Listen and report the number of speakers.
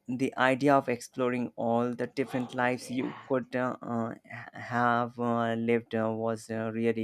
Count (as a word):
one